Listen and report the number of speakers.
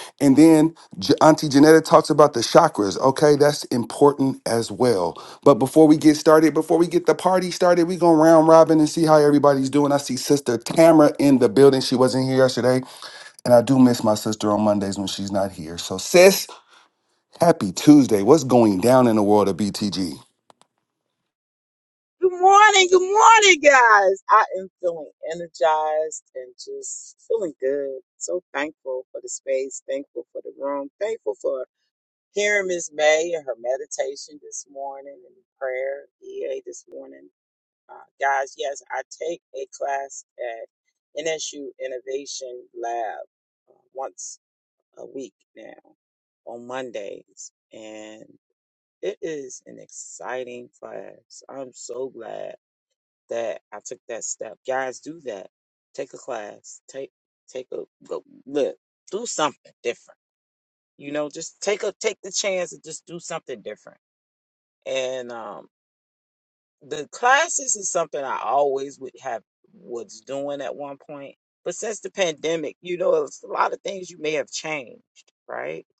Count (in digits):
2